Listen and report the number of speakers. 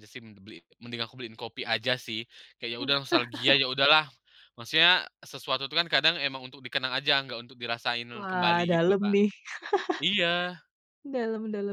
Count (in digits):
2